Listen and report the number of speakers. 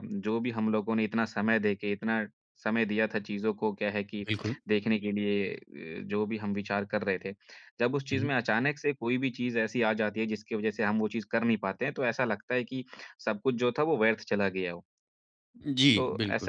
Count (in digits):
2